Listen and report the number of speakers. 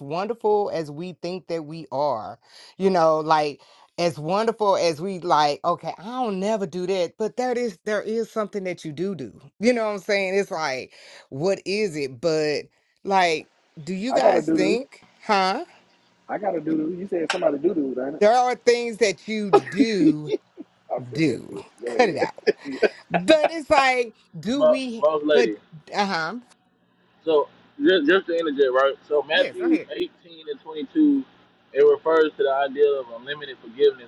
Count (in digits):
3